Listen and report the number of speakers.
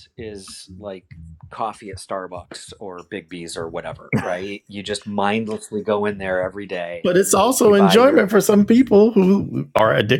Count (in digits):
2